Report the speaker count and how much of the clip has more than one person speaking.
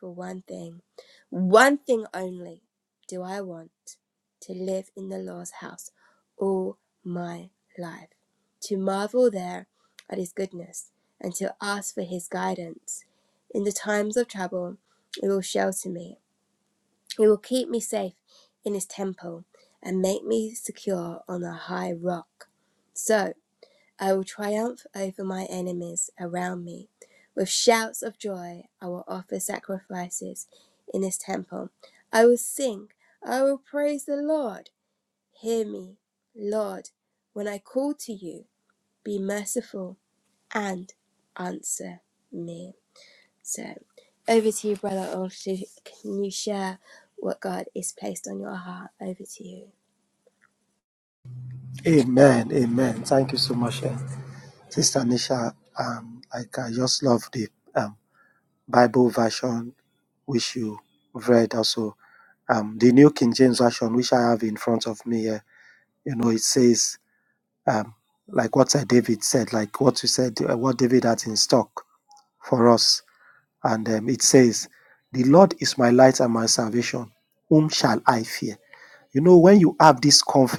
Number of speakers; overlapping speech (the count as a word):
two, no overlap